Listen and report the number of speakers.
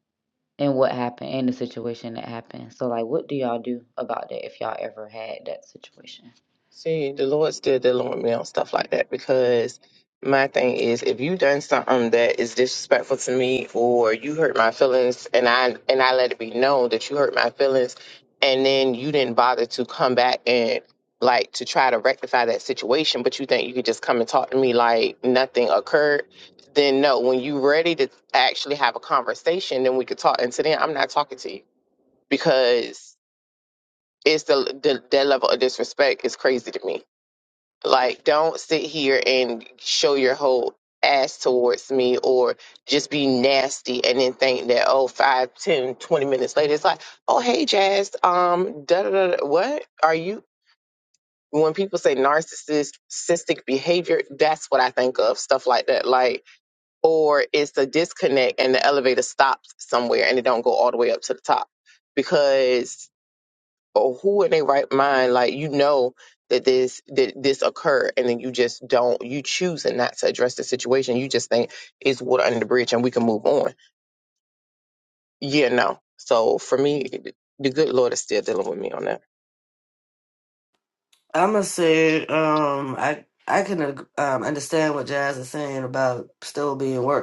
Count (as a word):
three